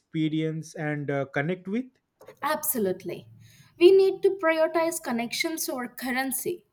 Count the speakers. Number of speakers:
2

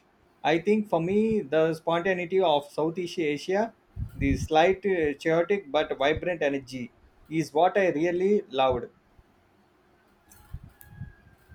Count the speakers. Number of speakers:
1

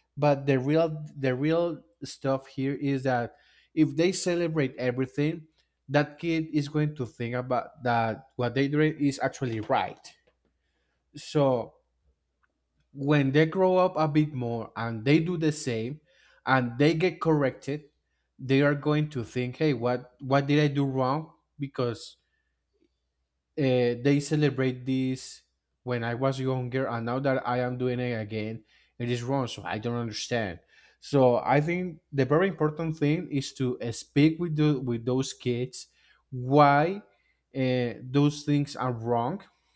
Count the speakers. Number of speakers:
1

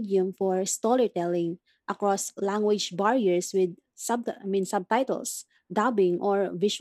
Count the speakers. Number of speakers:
1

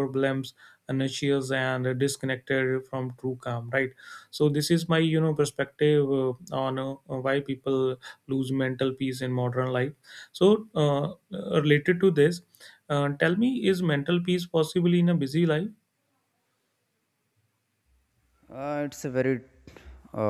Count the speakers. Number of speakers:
2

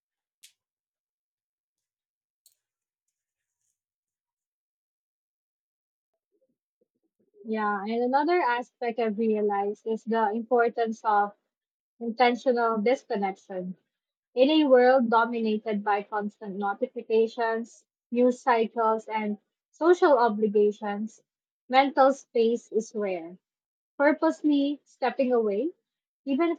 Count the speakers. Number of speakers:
1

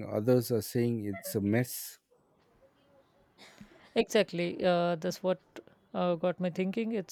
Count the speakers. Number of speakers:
2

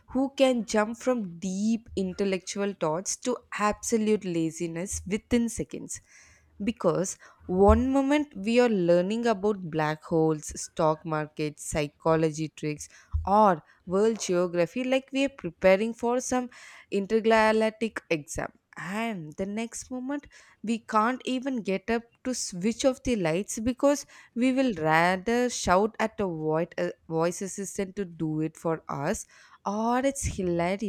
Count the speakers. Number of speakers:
1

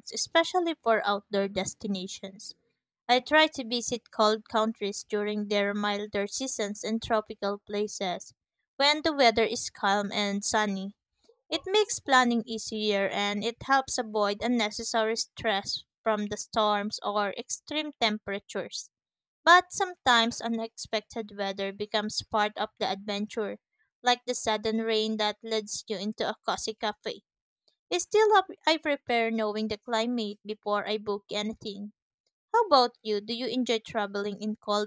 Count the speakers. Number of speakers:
1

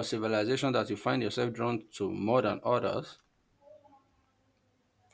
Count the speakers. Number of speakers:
1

